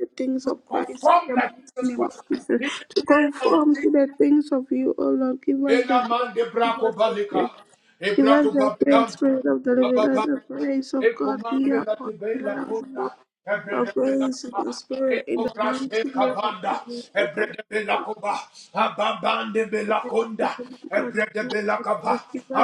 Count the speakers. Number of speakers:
2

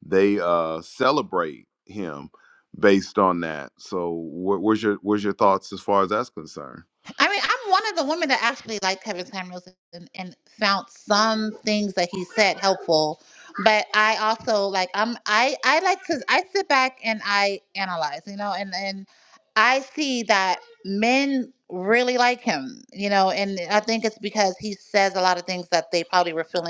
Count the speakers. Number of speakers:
2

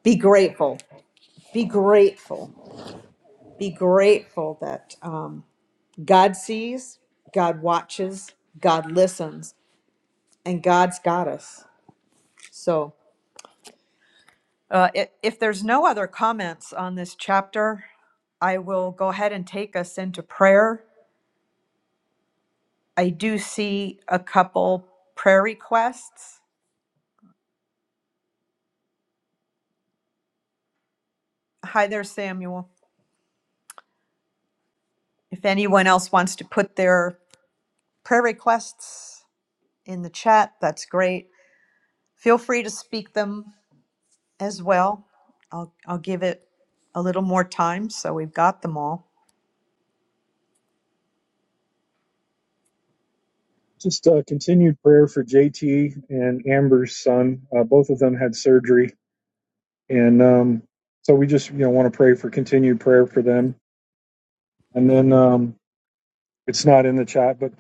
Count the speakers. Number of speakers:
2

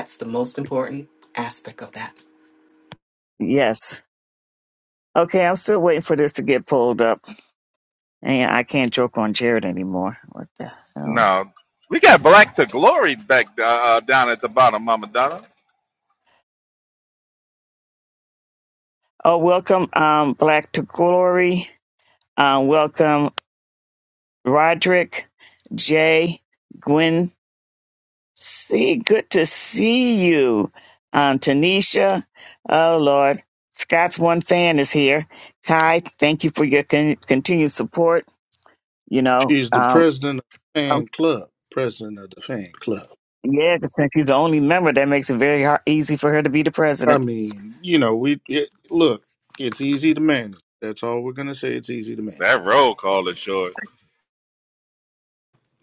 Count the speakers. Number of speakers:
4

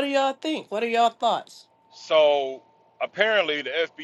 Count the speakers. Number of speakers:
2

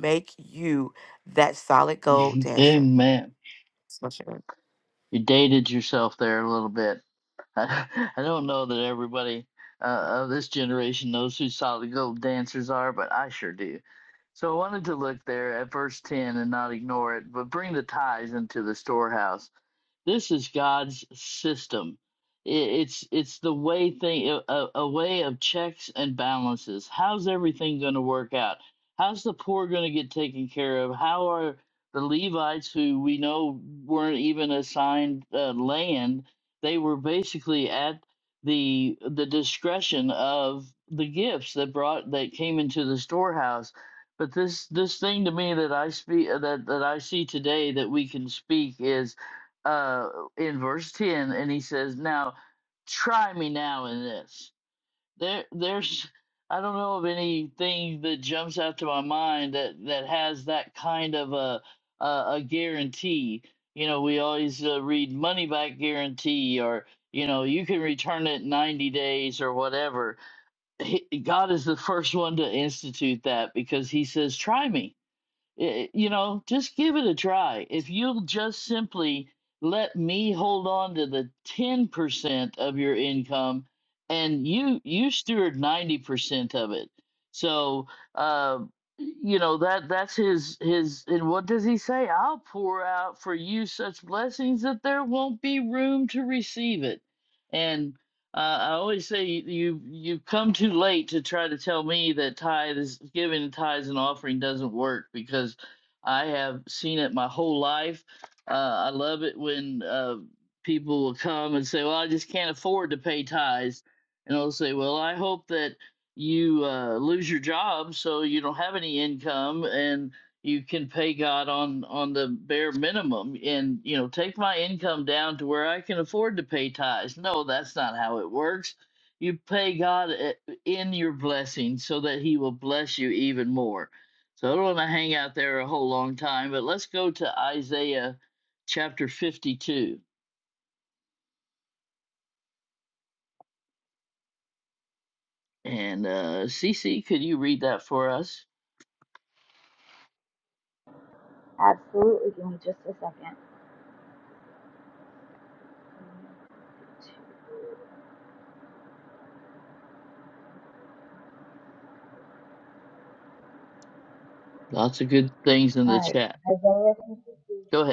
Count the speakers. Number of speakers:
3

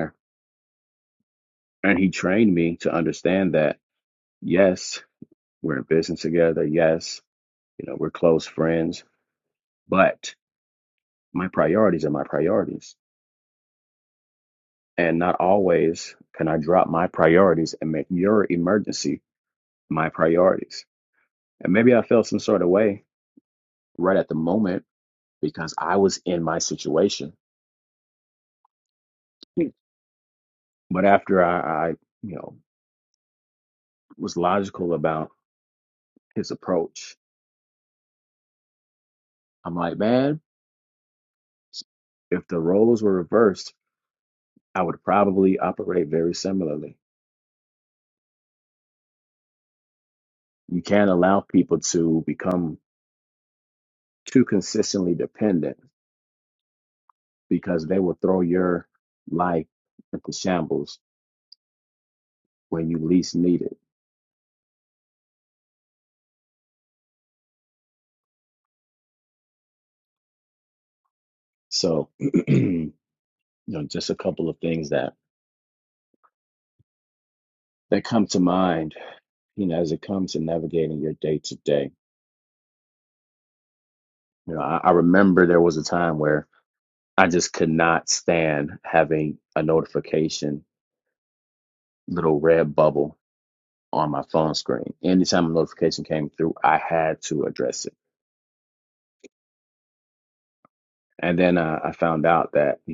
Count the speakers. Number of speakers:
1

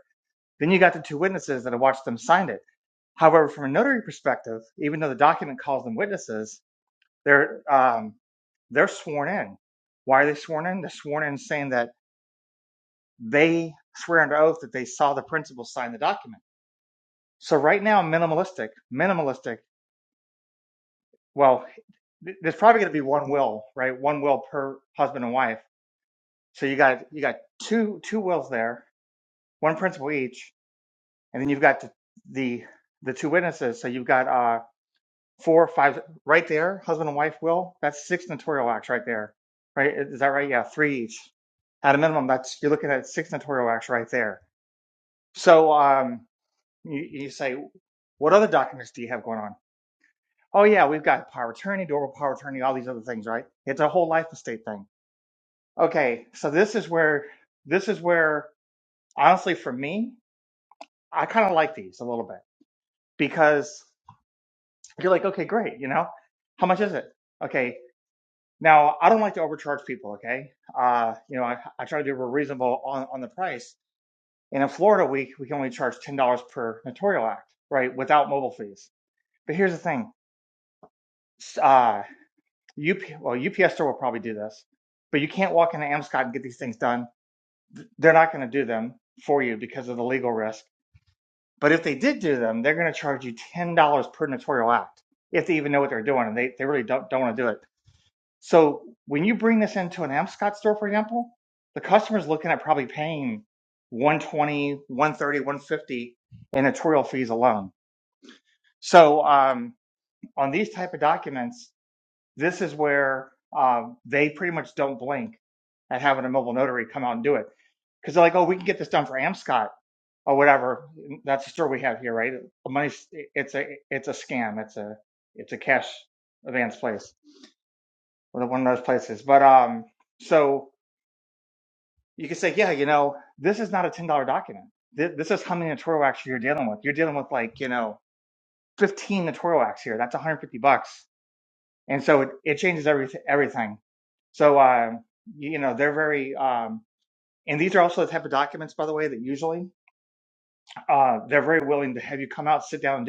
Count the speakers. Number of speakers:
1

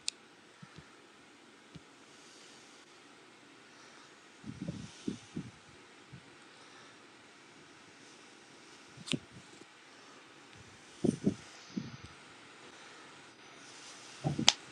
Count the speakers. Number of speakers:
0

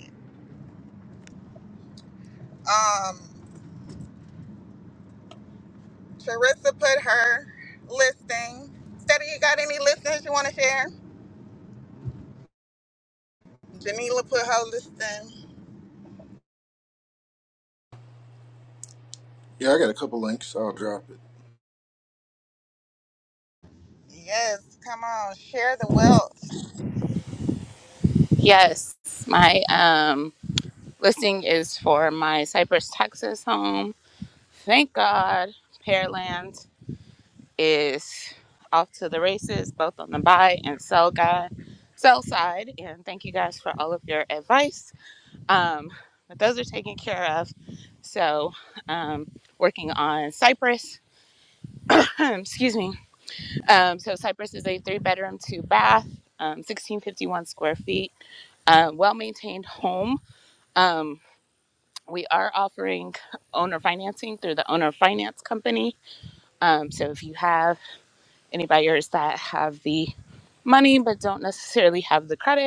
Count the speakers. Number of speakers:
3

